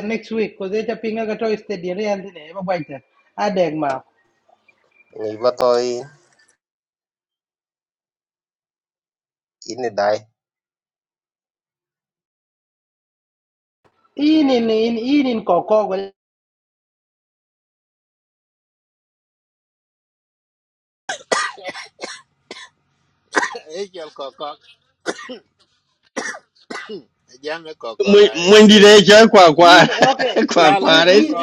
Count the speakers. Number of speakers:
4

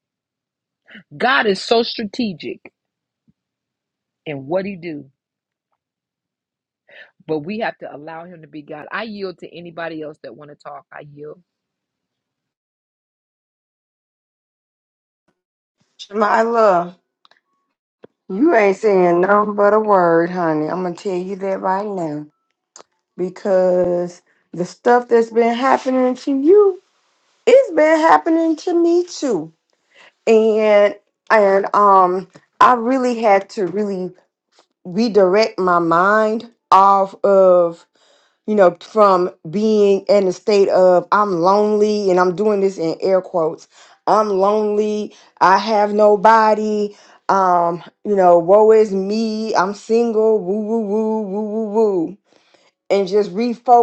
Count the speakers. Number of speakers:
2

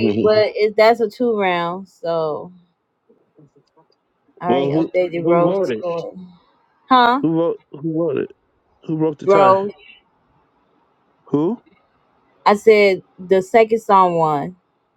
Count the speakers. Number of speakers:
2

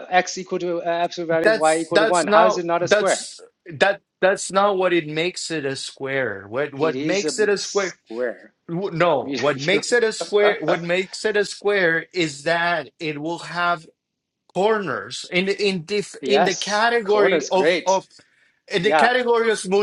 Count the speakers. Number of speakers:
2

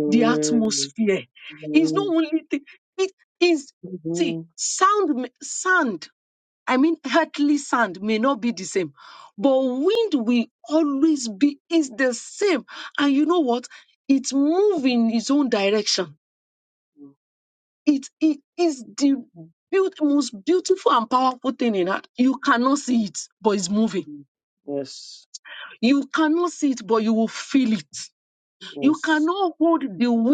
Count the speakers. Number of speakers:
2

